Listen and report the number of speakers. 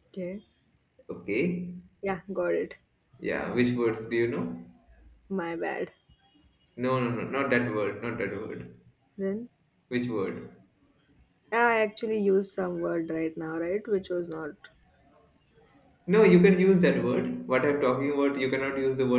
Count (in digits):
2